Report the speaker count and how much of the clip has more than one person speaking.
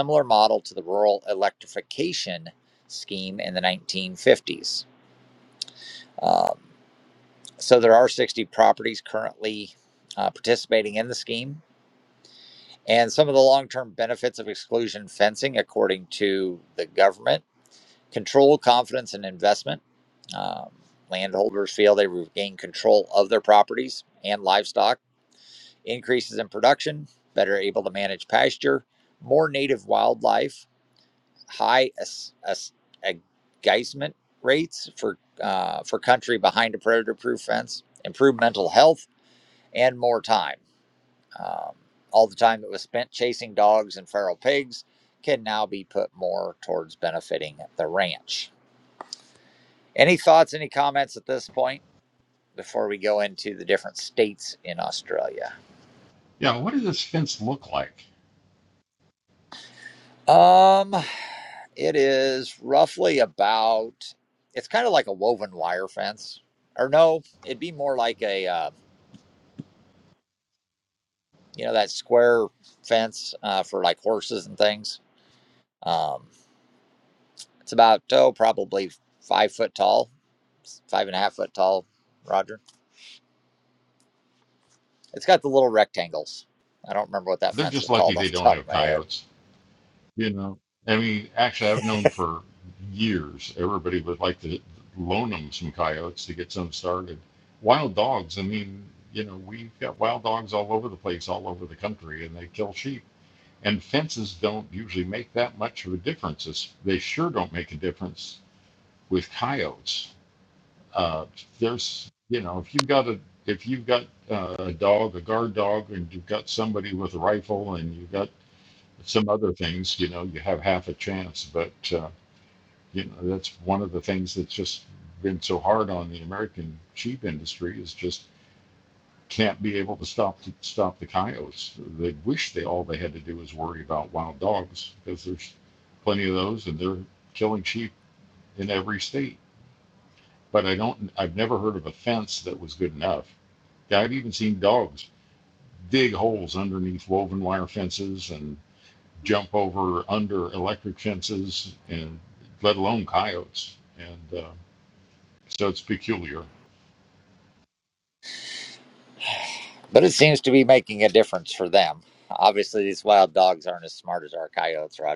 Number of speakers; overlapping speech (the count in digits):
2, about 1%